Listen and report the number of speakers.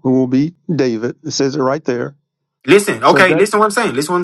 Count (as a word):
two